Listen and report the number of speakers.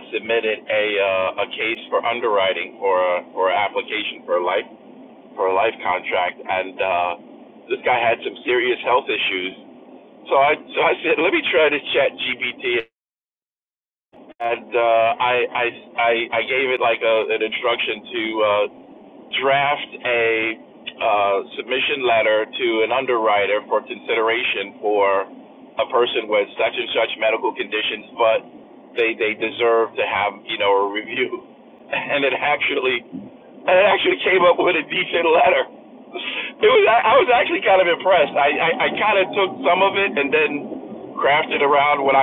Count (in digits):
1